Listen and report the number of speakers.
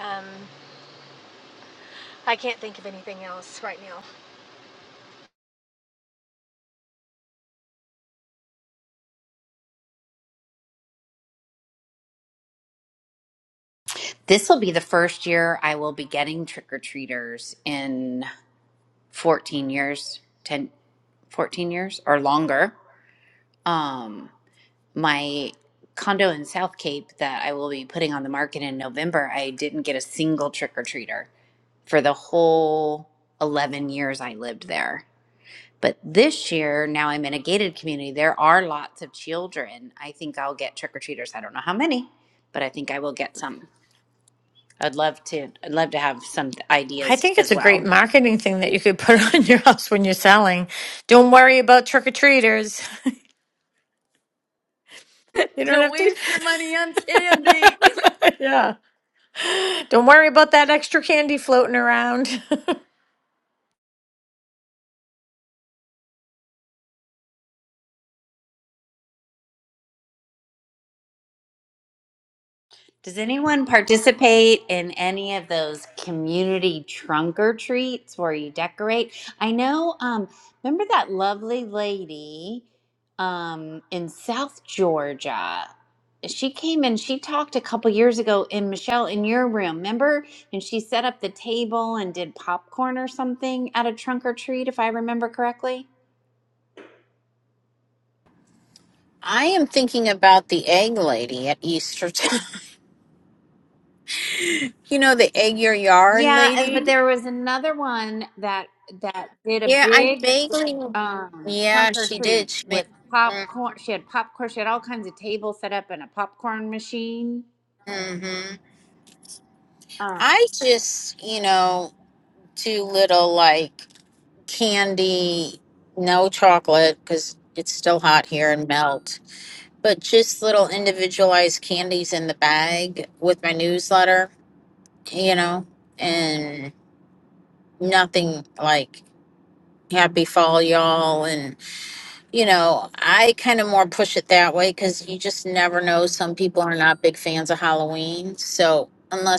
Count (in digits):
4